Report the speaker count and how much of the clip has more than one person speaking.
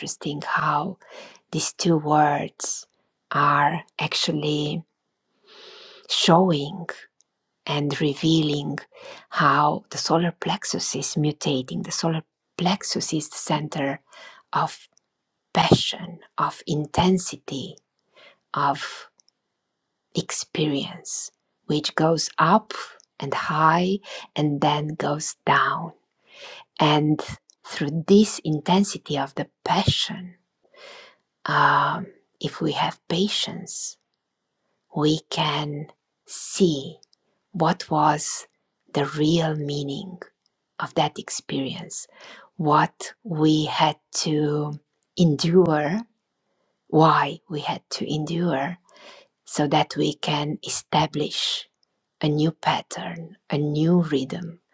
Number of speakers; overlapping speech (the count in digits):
1, no overlap